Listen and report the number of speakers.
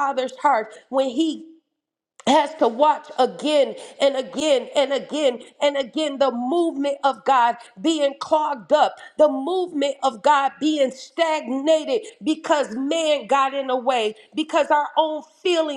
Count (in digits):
1